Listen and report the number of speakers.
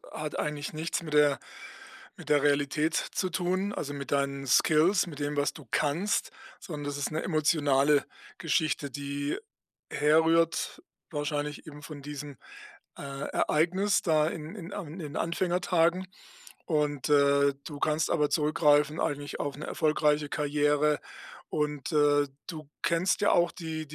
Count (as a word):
one